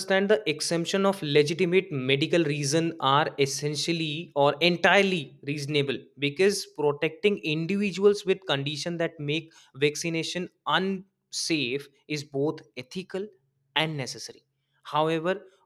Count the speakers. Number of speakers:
1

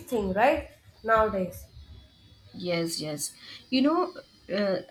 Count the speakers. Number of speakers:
2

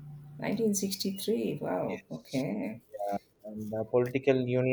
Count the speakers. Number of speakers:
2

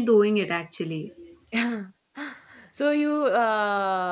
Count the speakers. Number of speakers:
2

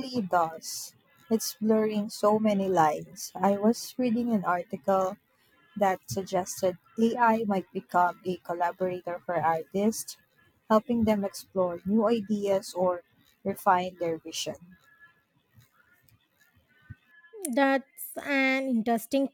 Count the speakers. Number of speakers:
2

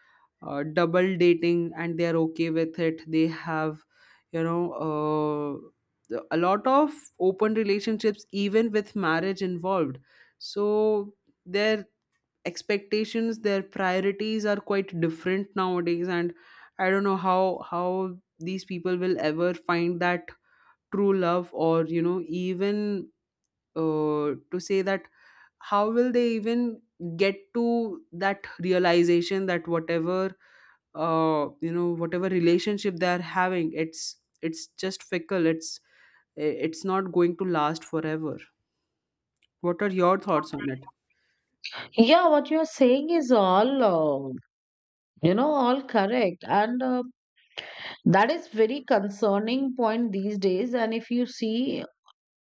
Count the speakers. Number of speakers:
2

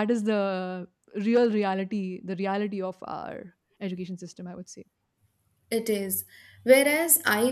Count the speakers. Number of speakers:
2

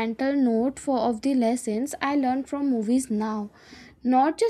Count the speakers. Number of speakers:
1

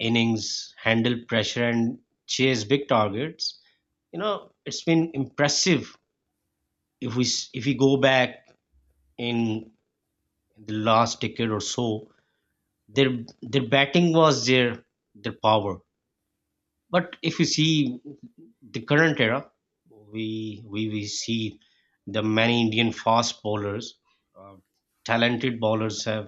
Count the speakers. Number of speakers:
1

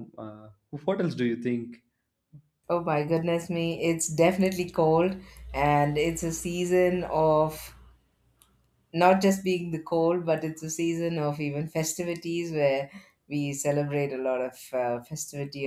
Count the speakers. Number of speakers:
2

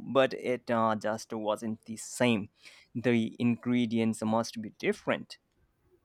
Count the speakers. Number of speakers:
1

